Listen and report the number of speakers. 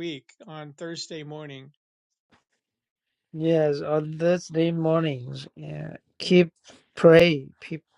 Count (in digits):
2